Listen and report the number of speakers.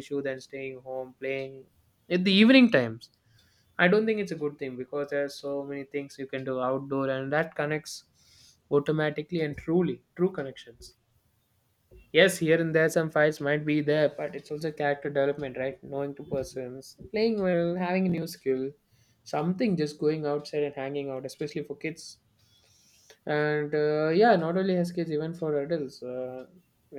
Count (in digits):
1